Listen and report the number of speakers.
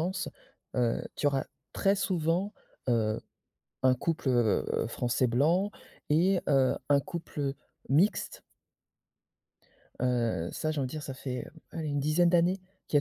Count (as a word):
one